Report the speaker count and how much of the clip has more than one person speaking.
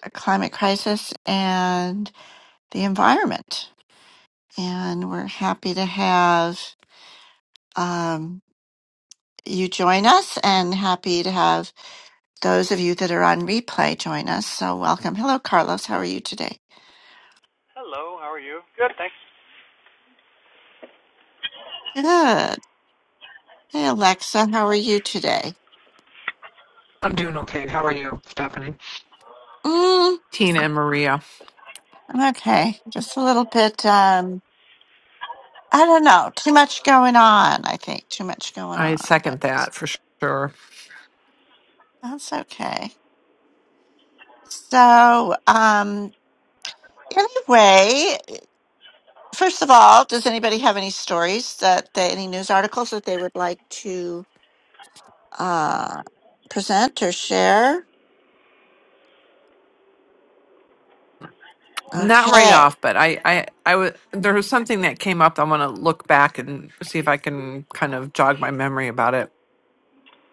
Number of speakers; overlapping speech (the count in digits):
3, about 2%